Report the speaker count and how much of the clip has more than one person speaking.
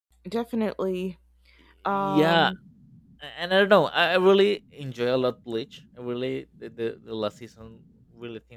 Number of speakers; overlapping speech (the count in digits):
2, about 7%